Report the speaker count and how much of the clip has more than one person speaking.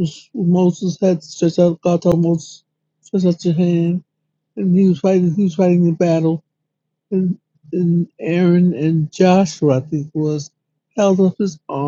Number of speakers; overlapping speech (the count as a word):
one, no overlap